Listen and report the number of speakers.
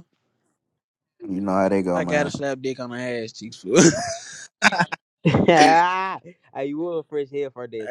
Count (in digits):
3